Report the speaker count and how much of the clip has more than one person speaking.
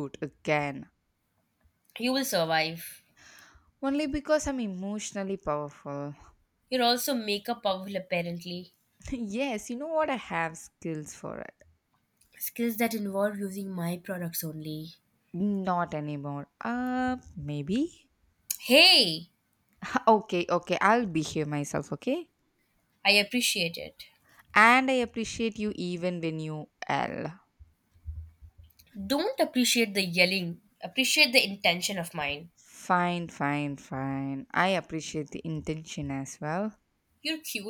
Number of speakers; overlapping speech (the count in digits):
2, no overlap